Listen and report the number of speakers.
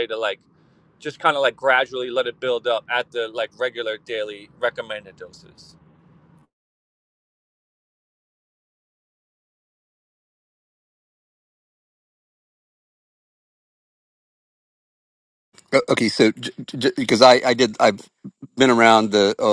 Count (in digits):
2